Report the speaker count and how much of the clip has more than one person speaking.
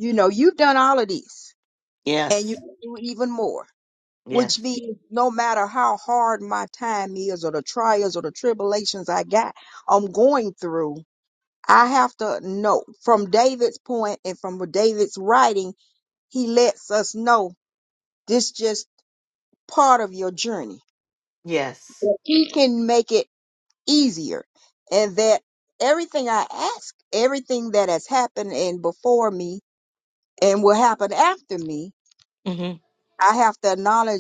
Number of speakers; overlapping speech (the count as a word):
two, about 1%